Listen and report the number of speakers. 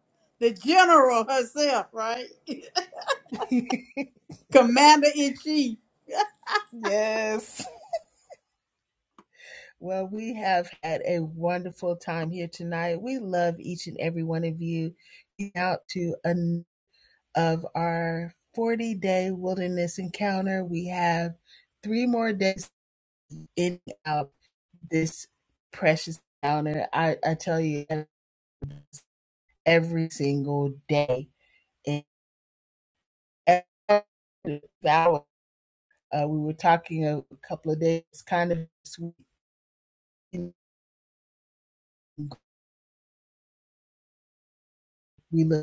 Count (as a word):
two